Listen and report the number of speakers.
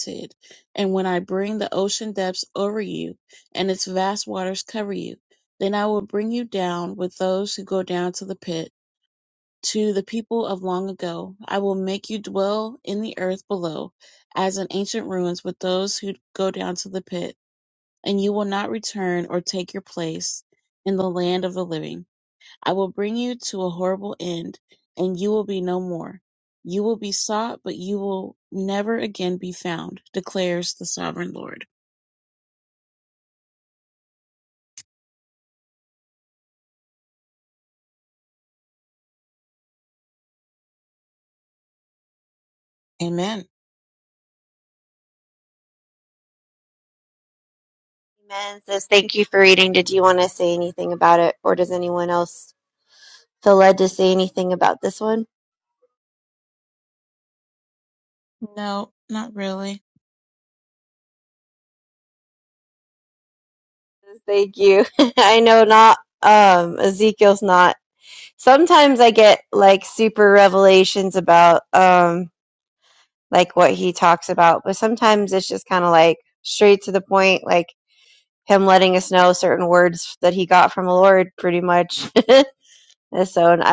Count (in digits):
2